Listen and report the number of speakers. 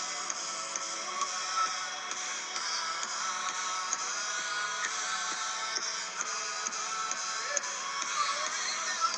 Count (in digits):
0